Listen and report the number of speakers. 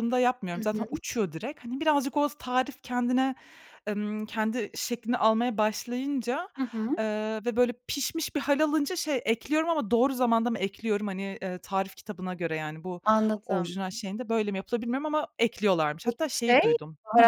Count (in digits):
2